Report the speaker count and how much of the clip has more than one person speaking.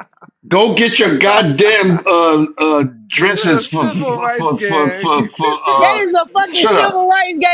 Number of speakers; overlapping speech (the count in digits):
3, about 28%